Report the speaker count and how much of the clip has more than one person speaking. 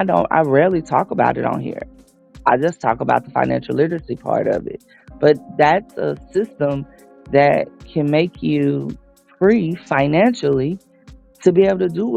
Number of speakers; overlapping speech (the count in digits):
1, no overlap